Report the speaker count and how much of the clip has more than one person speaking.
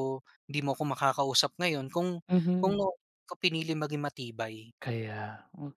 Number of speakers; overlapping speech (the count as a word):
two, about 2%